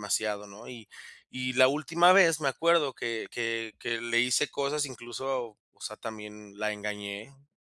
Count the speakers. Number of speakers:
one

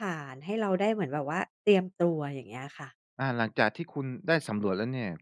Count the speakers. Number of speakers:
two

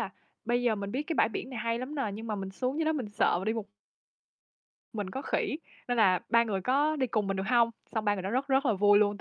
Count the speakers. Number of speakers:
one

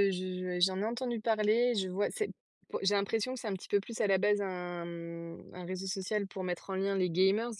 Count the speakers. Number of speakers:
one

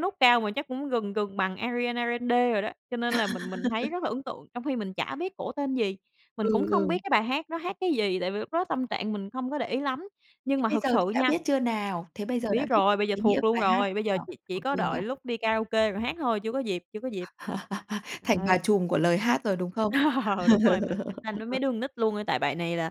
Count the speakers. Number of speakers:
two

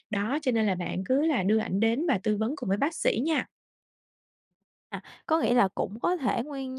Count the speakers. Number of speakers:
two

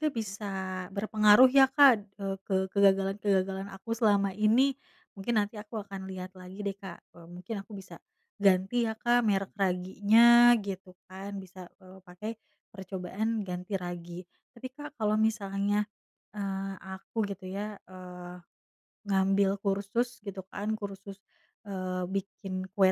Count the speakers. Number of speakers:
one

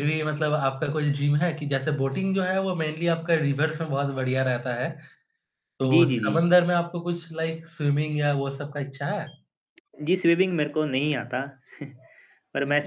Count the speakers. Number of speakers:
two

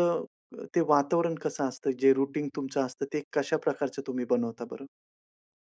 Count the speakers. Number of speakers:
one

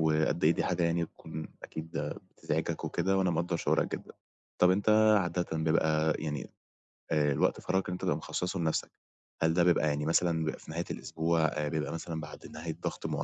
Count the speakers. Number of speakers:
one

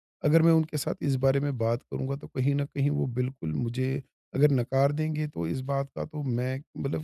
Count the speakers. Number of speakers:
one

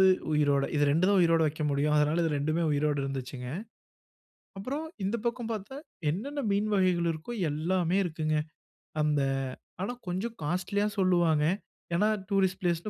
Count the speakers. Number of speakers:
one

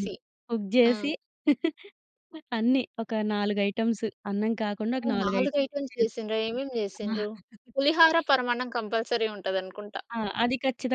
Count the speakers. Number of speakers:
two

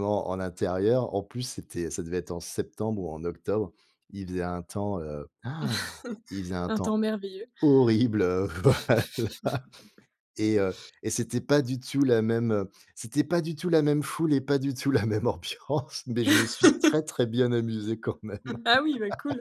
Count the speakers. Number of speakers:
two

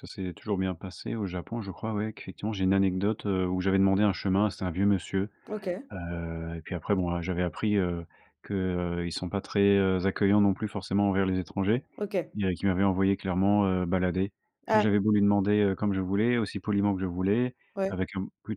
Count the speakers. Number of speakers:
two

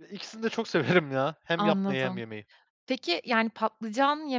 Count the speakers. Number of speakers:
two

